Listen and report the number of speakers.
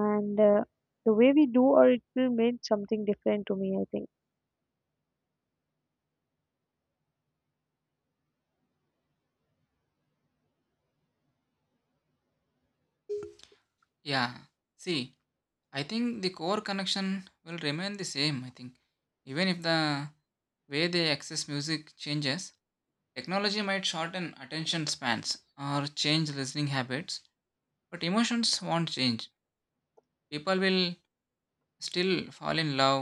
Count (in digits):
2